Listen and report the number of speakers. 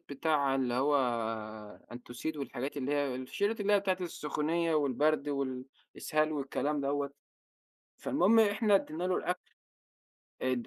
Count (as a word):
one